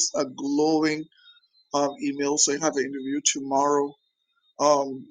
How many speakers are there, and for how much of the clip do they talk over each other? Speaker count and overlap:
one, no overlap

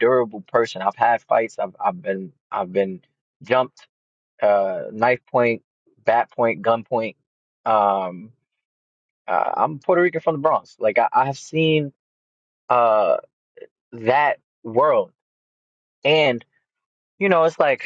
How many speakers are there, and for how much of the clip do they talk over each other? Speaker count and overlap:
one, no overlap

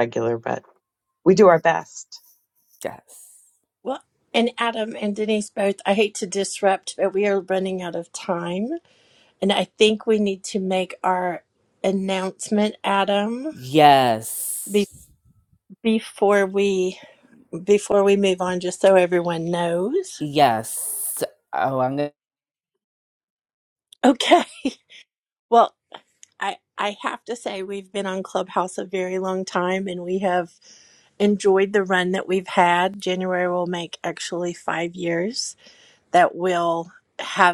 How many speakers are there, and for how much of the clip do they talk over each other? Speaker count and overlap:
three, under 1%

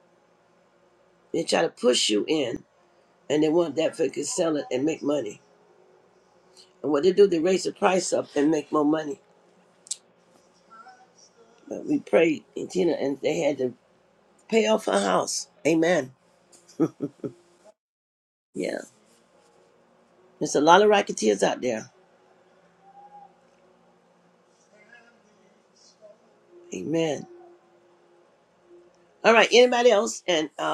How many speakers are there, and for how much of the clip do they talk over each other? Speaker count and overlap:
one, no overlap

